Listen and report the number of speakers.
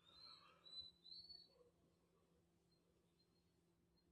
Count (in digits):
0